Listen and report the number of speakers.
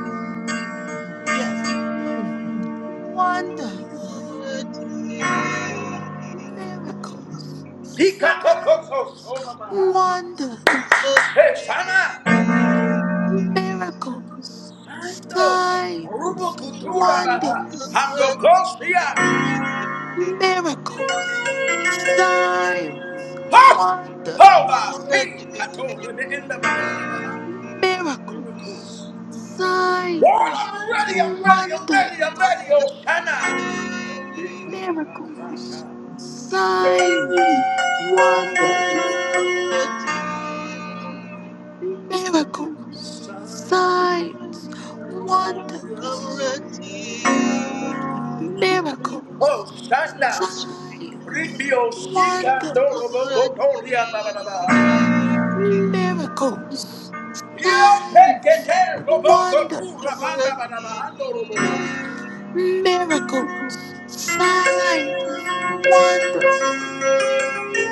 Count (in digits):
3